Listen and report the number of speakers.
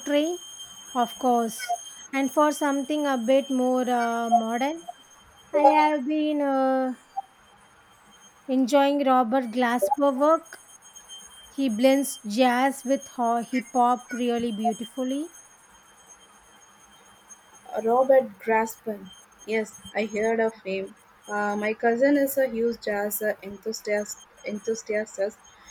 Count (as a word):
two